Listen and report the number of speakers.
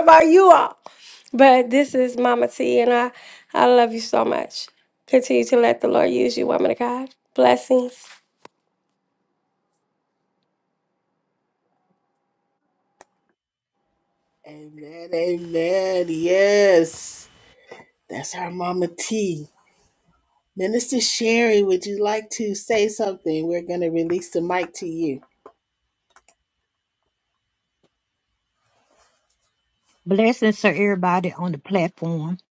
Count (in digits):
3